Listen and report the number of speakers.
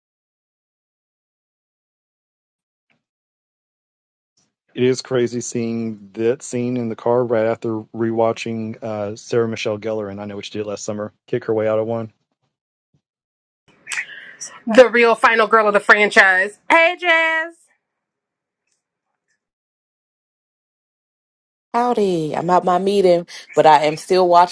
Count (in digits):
3